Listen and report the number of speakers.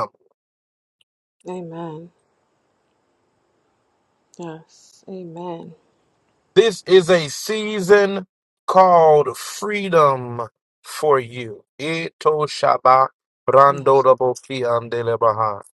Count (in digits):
2